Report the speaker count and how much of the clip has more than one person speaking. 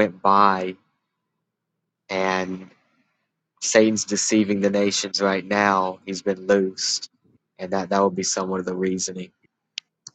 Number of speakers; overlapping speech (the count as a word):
one, no overlap